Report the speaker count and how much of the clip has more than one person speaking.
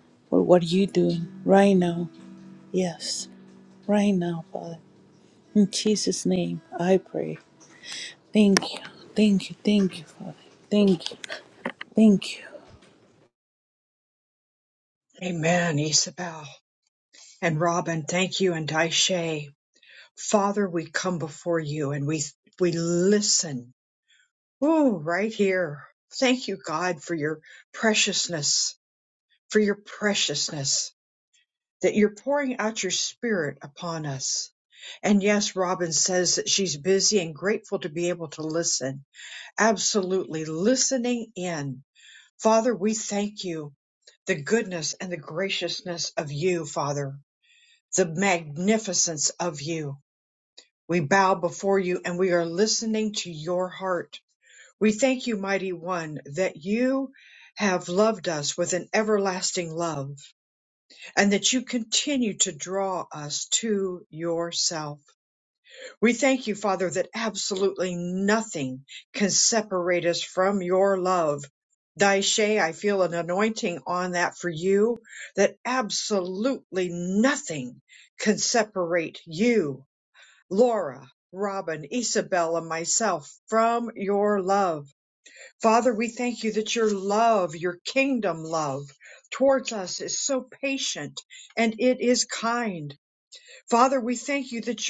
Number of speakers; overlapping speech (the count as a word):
two, no overlap